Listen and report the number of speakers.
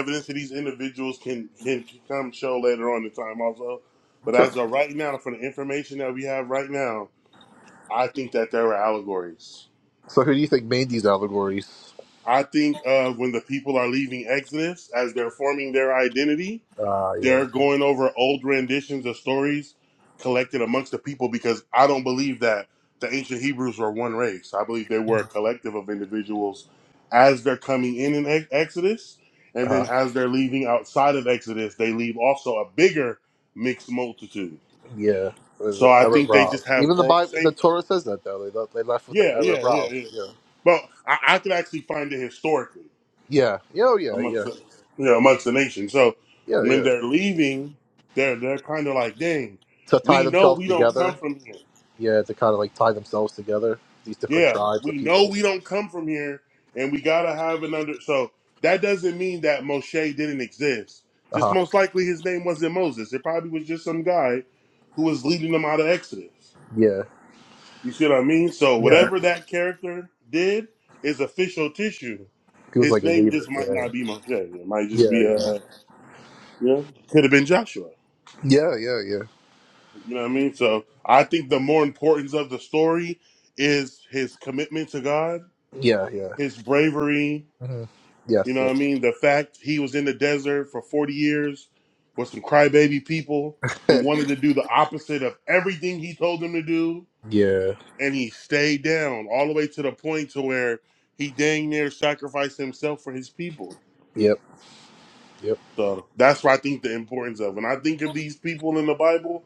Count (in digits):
2